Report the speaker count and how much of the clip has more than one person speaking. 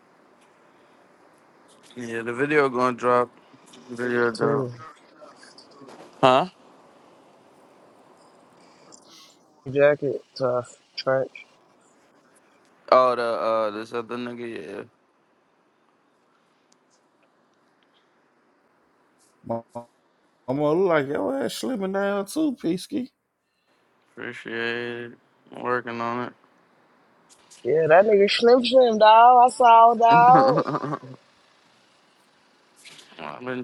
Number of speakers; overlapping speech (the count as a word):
three, about 3%